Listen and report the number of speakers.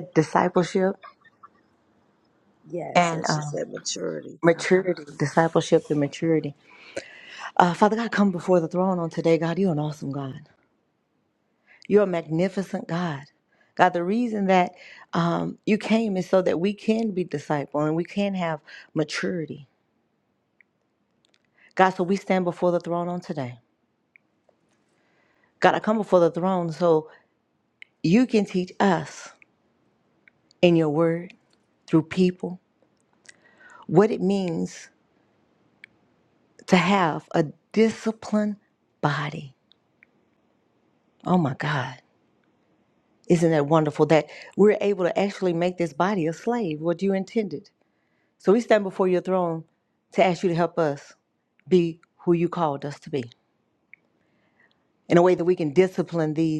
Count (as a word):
two